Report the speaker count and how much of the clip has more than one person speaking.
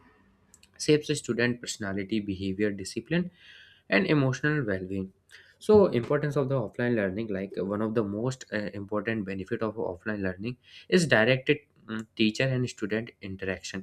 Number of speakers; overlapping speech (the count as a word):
one, no overlap